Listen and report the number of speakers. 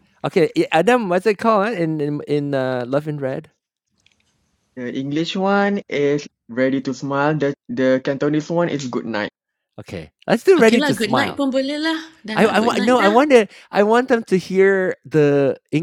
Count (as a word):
three